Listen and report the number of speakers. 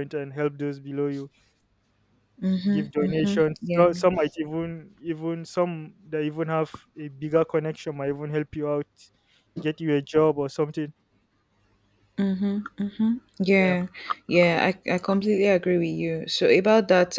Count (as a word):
two